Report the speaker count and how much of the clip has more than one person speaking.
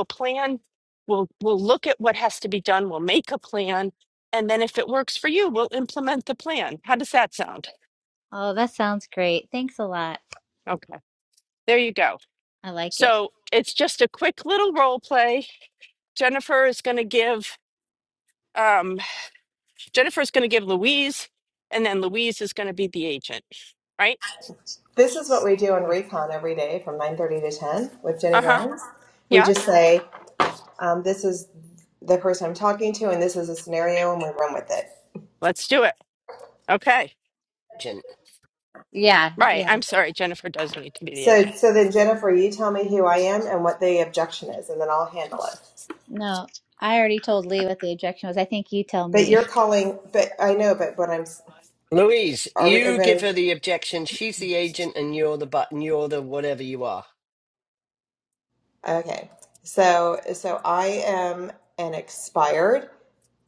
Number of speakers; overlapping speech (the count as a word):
four, about 4%